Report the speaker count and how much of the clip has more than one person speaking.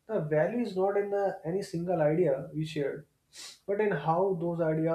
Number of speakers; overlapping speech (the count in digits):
1, no overlap